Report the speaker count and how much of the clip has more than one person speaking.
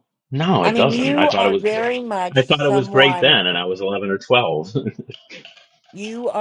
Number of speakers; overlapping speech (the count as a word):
two, about 30%